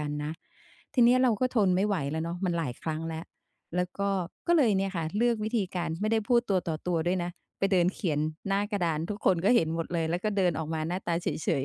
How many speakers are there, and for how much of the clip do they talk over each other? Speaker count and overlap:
1, no overlap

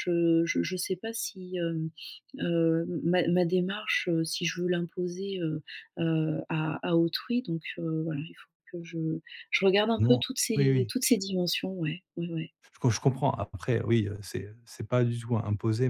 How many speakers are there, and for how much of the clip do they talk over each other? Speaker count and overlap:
2, about 3%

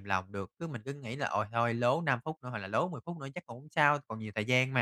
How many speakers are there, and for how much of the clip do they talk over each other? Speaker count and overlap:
1, no overlap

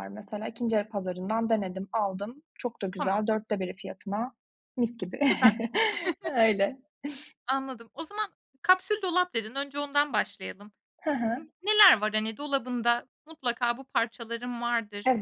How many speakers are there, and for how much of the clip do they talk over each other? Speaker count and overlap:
2, about 3%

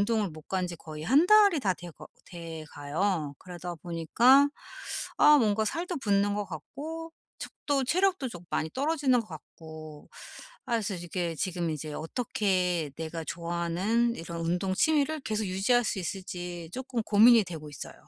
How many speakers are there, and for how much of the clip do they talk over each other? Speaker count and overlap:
1, no overlap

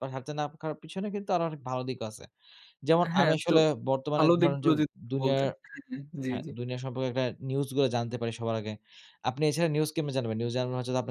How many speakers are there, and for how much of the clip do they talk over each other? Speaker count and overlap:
2, about 15%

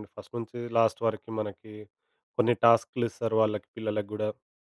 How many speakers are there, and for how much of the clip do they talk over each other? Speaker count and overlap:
1, no overlap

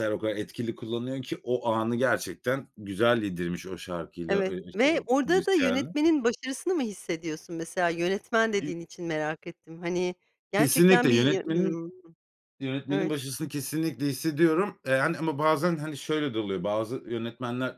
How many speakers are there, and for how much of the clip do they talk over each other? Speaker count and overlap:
2, about 17%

